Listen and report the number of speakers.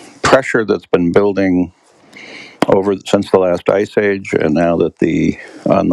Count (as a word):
one